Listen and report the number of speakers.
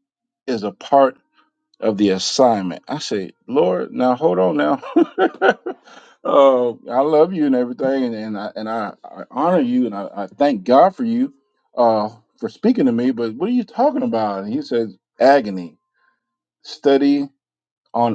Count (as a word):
one